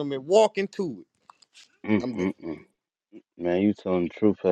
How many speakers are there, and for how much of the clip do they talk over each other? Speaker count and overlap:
2, about 6%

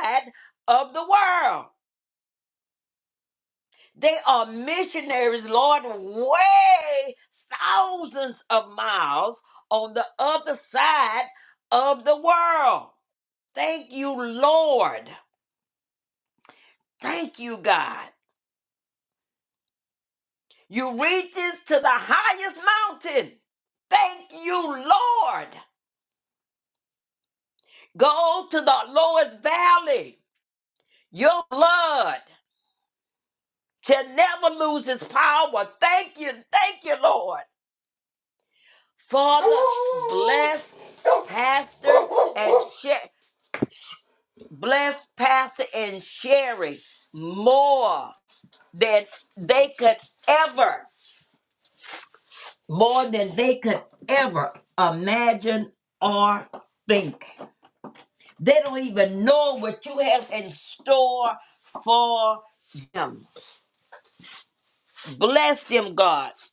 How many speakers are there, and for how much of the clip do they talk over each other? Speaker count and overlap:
1, no overlap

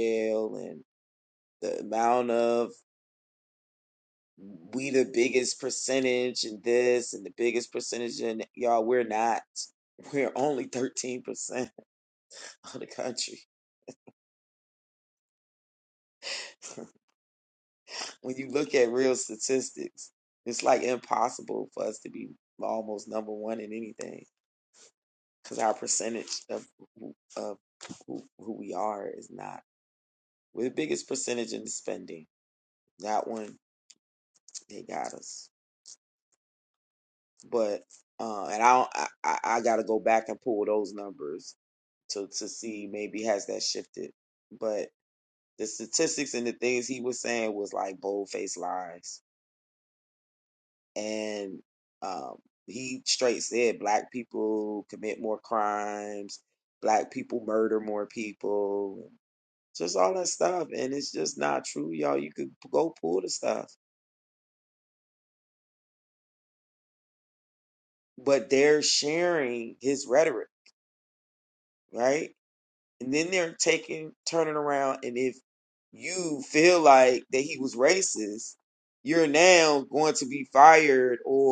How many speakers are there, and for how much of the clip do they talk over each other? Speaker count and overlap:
1, no overlap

